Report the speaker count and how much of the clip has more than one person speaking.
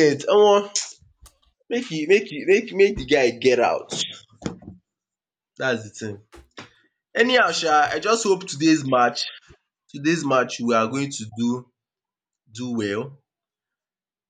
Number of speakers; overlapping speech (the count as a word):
one, no overlap